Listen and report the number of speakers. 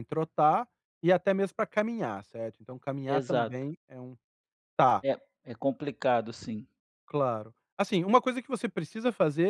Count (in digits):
2